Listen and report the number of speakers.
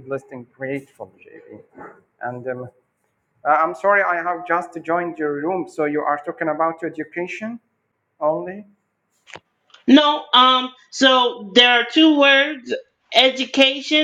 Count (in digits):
2